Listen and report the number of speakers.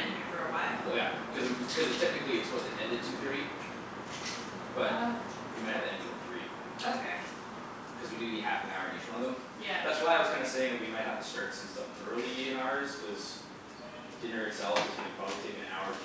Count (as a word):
two